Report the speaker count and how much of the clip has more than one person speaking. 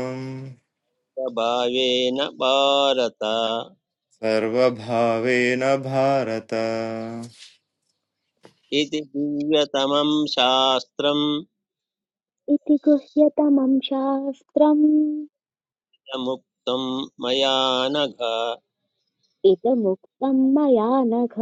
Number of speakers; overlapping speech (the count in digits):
3, no overlap